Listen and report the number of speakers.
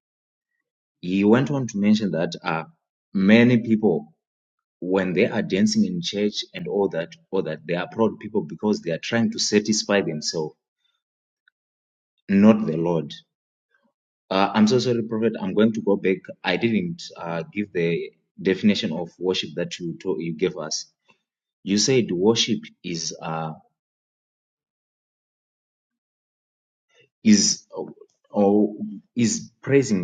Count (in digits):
1